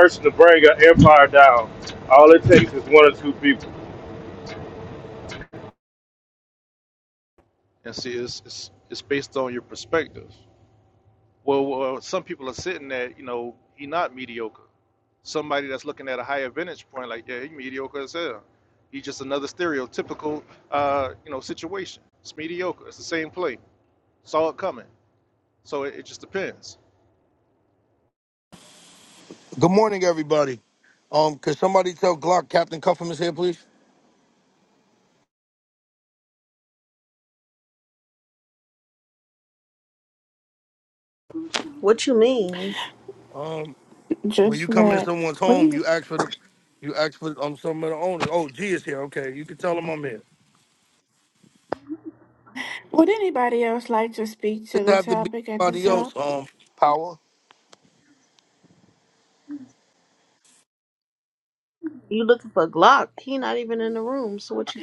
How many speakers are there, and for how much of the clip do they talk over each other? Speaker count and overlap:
5, about 3%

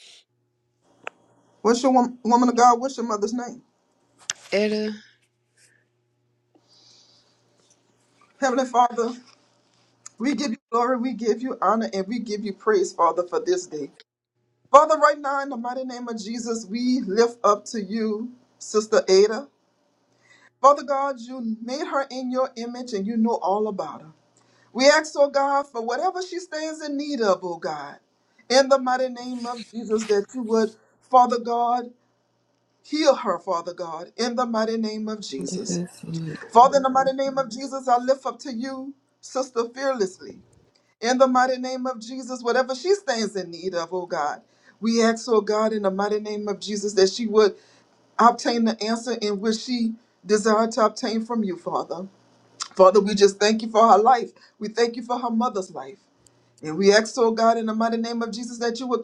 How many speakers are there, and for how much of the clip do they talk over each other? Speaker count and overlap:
2, under 1%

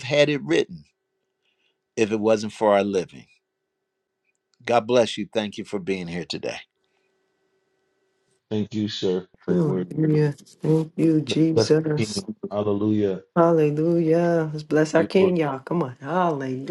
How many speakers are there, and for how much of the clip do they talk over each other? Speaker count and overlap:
3, about 8%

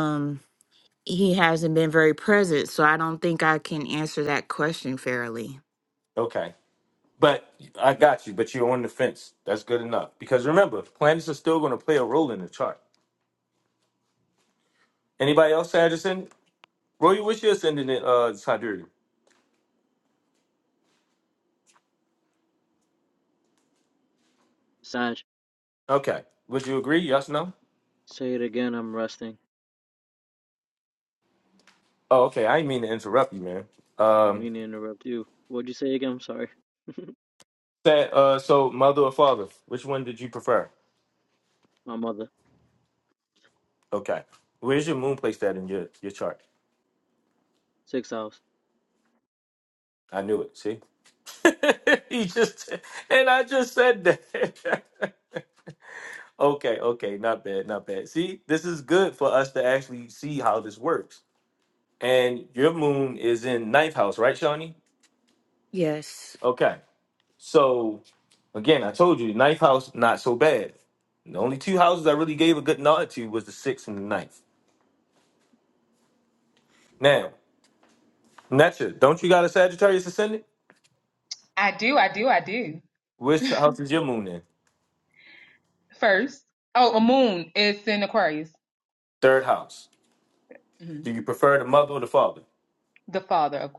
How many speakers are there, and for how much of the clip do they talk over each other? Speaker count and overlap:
4, under 1%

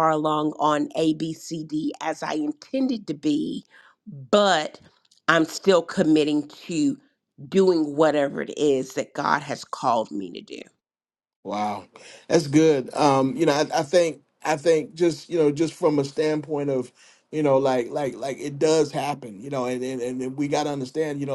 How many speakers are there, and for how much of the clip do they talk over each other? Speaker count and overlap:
2, no overlap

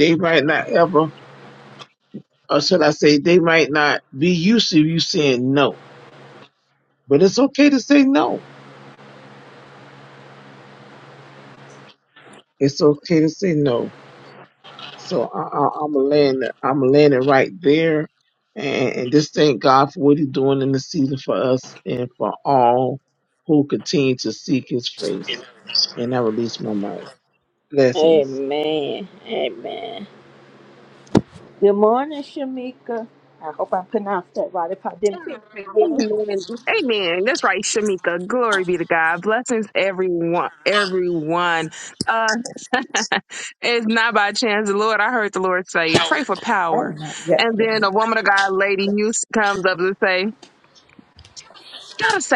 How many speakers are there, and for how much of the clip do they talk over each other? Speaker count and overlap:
3, about 2%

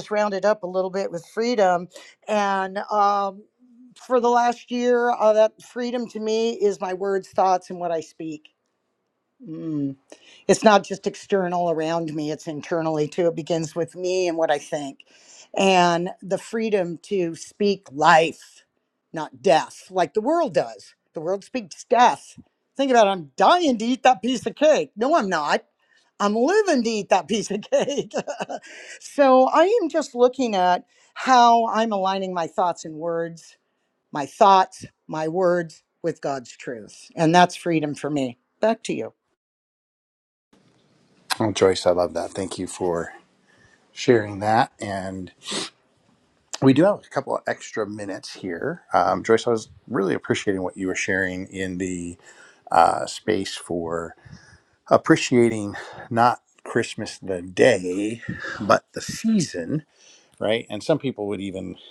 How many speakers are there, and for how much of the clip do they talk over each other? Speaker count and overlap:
2, no overlap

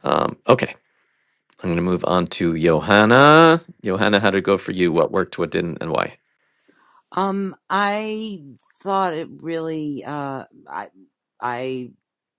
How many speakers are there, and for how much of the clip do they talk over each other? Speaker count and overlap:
2, no overlap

